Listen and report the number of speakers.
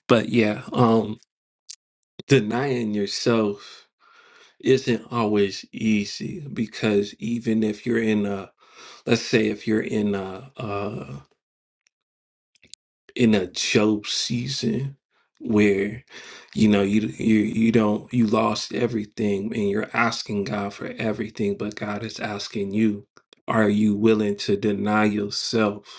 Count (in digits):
1